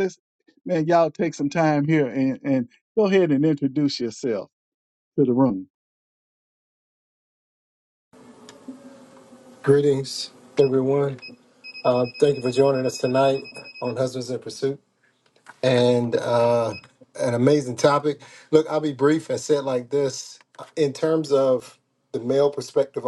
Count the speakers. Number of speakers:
two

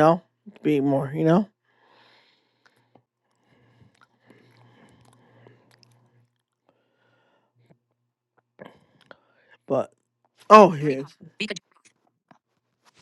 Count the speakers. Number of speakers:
one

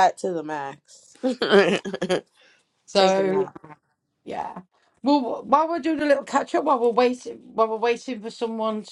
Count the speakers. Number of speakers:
two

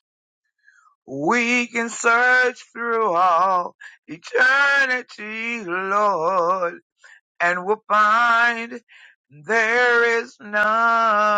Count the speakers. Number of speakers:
one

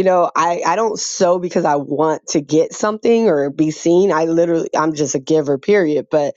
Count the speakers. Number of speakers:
one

